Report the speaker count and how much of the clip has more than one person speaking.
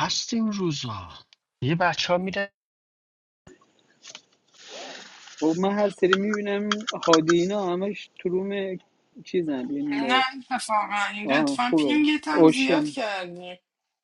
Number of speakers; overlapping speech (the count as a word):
three, about 15%